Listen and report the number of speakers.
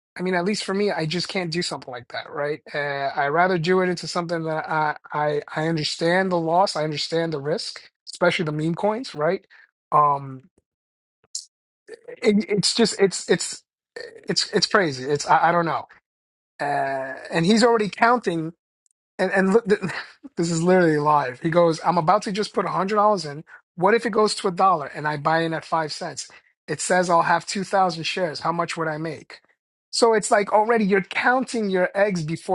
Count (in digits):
1